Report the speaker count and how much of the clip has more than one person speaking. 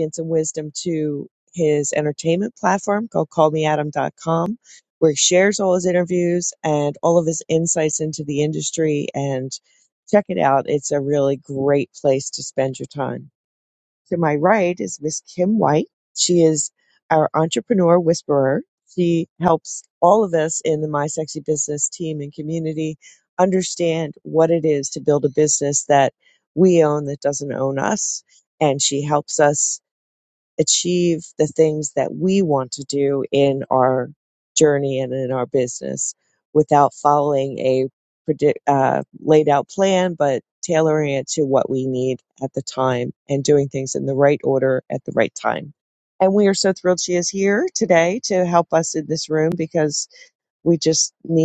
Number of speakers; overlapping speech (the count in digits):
1, no overlap